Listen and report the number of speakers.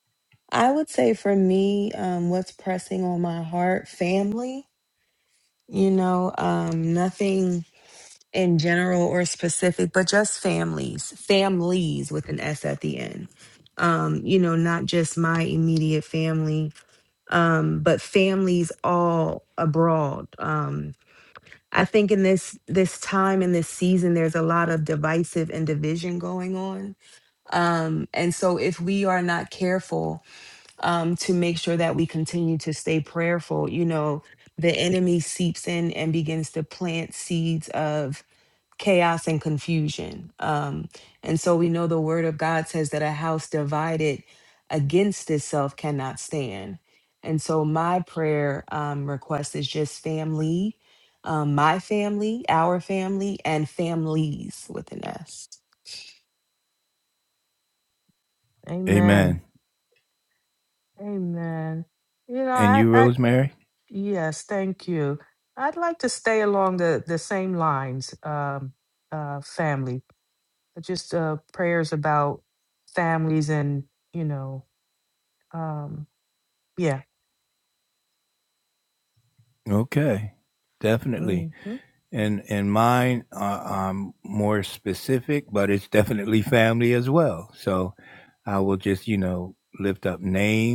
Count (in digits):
3